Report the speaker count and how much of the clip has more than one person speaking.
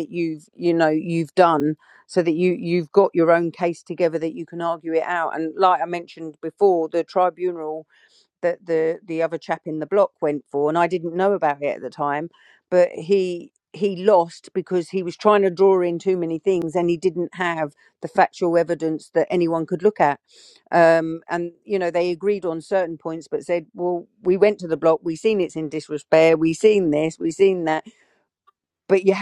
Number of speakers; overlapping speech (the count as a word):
one, no overlap